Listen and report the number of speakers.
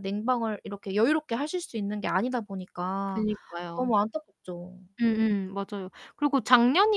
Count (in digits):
2